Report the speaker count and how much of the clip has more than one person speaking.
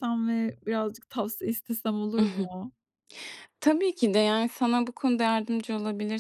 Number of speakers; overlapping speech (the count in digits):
2, about 5%